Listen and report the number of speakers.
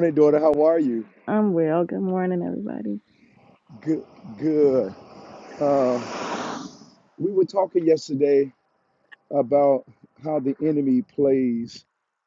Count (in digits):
2